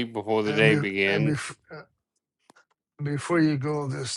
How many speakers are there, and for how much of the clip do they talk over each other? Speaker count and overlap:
two, about 22%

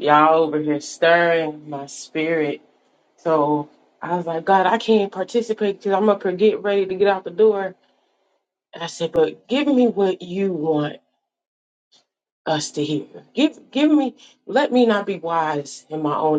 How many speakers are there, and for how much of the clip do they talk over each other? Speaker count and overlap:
one, no overlap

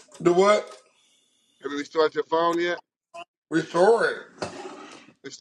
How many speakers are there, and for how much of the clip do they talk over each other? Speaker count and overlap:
two, no overlap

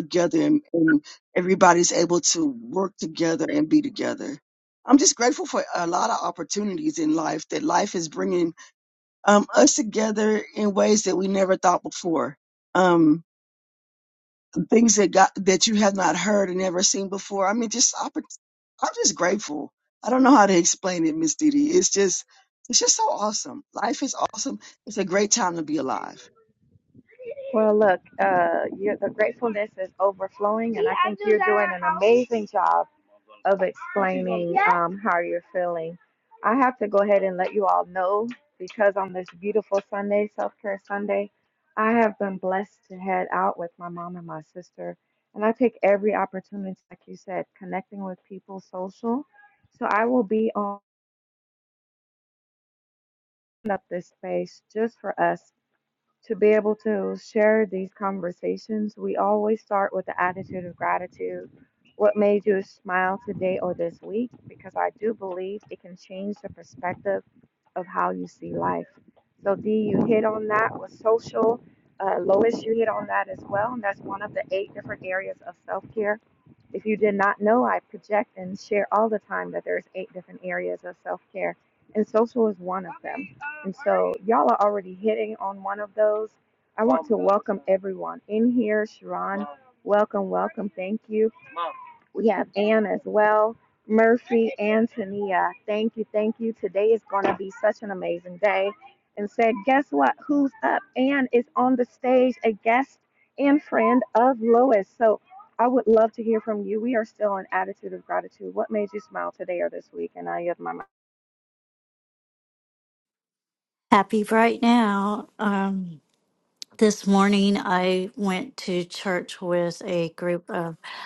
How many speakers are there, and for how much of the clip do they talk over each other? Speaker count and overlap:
three, no overlap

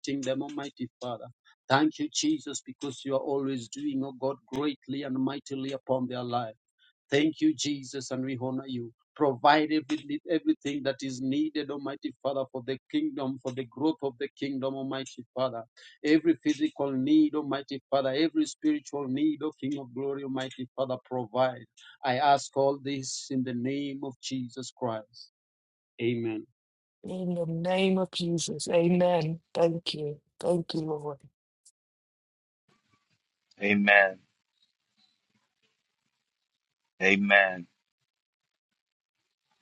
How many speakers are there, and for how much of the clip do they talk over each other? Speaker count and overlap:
three, no overlap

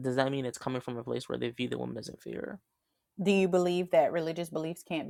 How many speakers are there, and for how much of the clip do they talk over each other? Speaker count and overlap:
two, no overlap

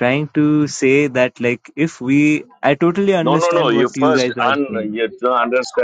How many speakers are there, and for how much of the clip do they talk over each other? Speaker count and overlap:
two, about 28%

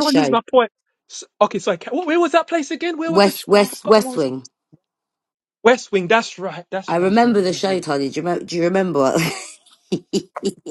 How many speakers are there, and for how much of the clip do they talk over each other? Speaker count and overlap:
two, about 22%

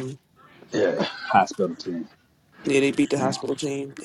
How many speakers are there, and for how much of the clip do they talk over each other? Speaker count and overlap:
two, no overlap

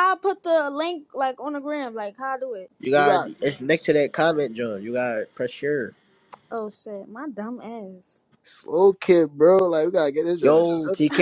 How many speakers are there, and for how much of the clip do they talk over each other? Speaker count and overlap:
three, about 5%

